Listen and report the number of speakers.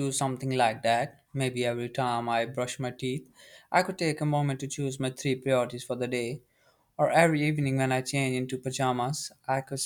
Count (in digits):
1